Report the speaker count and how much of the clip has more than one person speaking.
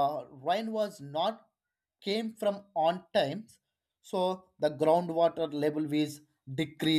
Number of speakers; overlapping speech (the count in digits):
1, no overlap